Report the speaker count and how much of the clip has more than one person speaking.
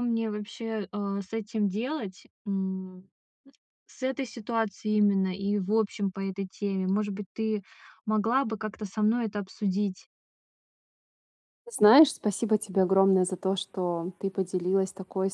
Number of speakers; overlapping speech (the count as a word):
two, no overlap